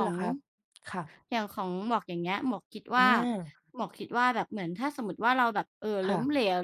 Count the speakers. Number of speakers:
two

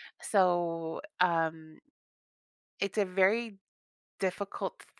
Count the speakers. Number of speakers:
one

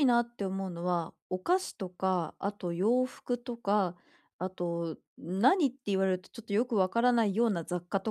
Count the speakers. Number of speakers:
one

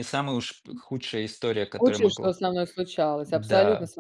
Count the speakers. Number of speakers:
two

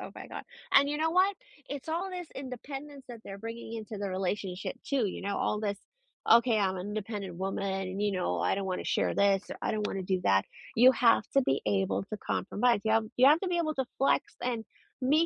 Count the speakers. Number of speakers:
one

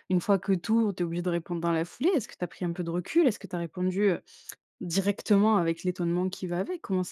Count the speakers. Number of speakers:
one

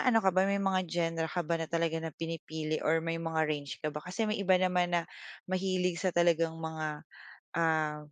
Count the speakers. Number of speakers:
one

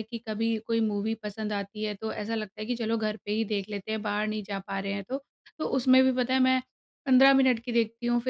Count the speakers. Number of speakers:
one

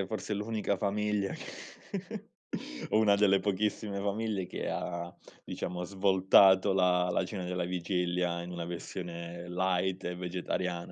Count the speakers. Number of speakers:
one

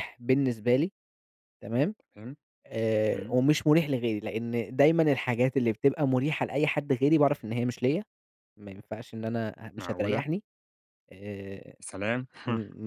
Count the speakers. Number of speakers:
two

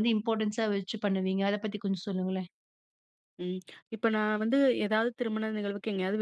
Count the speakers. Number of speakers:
two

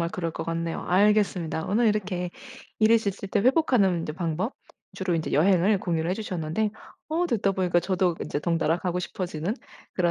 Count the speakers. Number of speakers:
one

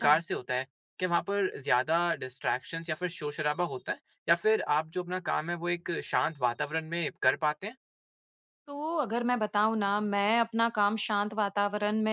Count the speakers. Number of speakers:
two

